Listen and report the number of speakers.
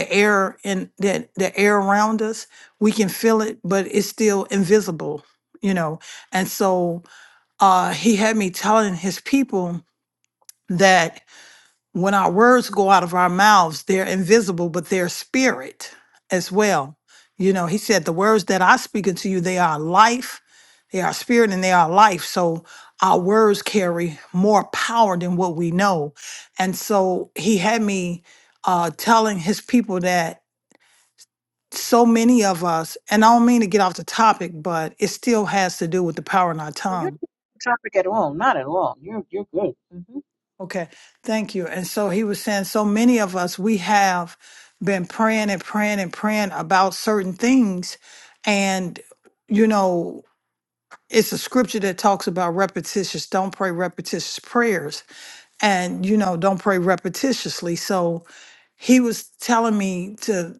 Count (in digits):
2